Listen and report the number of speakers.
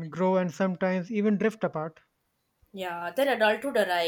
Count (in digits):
2